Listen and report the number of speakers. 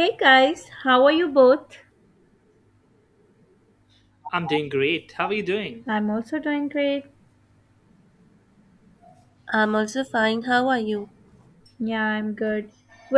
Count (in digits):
3